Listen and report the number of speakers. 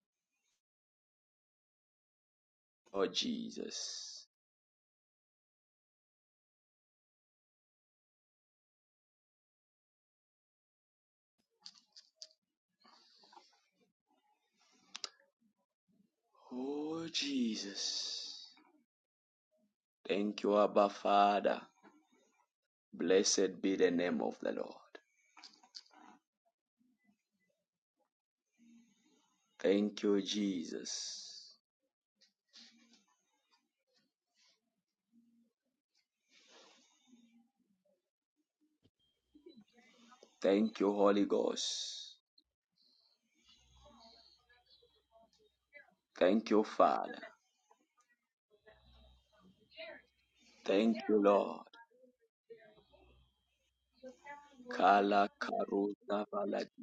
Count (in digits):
2